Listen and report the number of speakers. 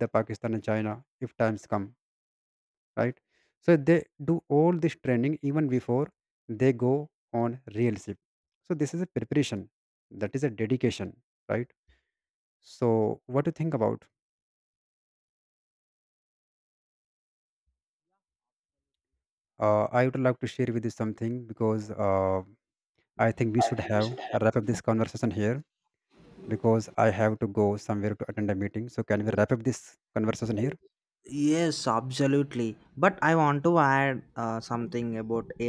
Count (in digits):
2